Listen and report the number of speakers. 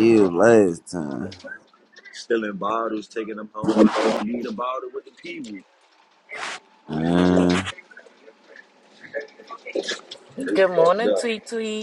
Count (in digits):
3